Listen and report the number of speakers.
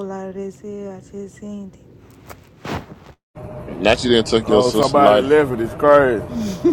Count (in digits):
3